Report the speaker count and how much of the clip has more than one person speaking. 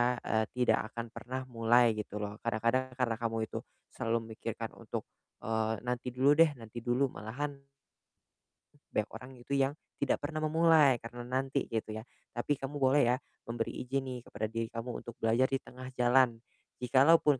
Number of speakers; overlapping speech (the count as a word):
one, no overlap